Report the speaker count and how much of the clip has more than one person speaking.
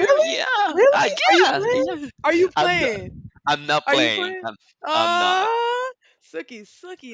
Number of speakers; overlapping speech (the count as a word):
two, about 47%